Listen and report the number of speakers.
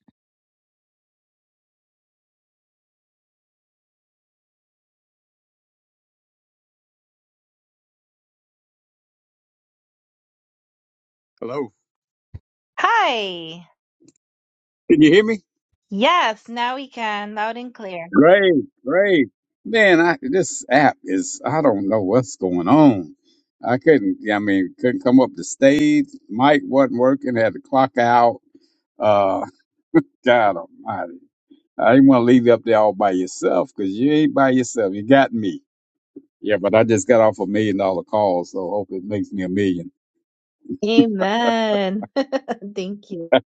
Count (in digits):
2